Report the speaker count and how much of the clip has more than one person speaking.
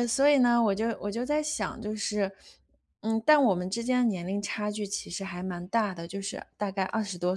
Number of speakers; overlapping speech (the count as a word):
one, no overlap